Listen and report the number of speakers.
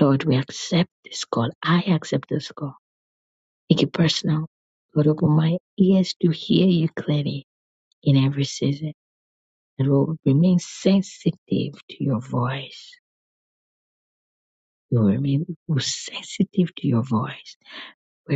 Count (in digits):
1